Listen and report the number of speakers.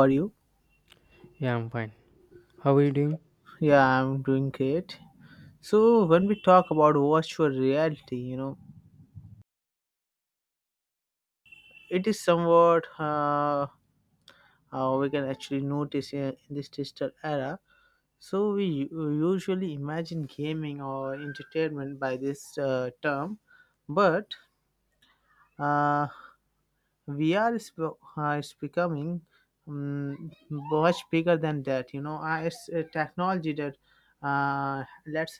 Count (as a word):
two